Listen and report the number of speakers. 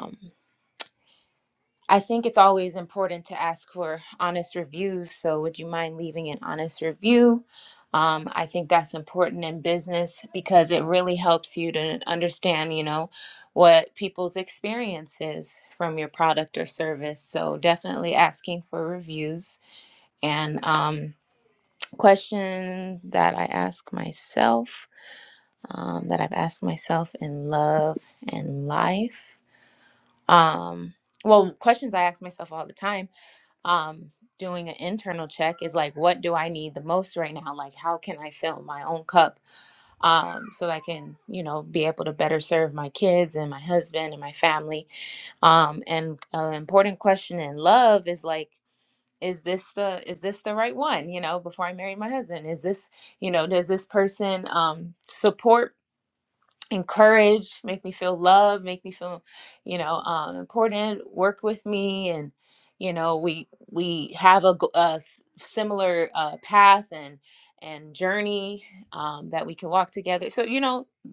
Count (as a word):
one